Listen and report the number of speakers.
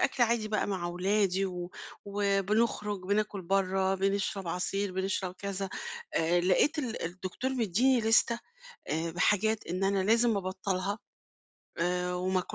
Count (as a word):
one